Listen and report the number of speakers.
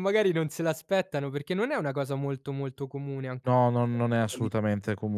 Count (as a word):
two